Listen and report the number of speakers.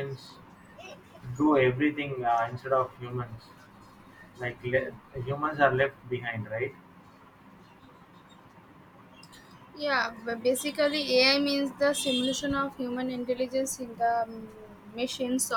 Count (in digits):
2